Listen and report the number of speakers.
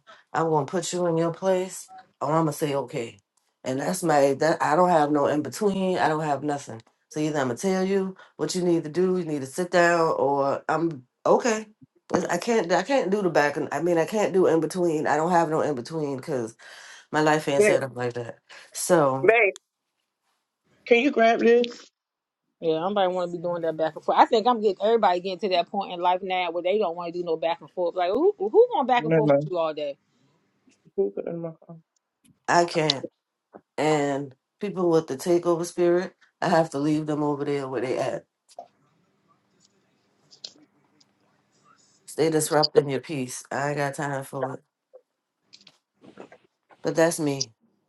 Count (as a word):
three